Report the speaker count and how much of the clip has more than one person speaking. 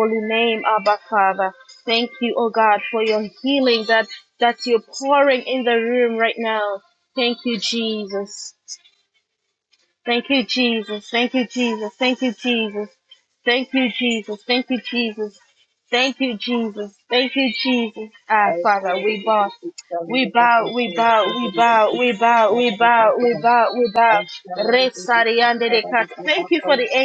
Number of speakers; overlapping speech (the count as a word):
two, about 24%